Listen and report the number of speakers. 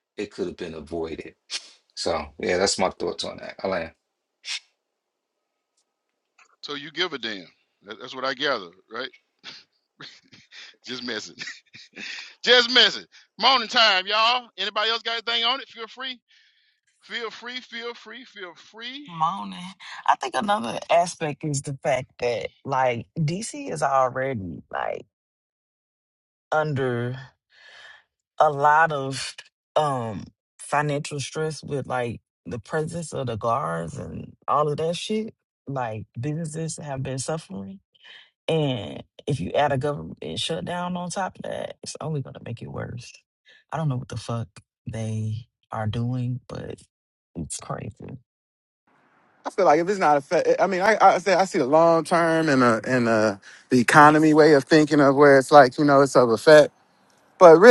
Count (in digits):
4